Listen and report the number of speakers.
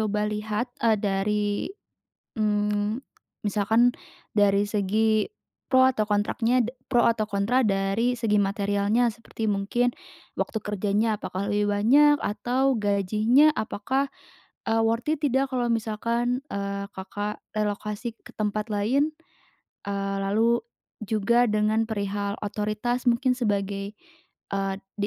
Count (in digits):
1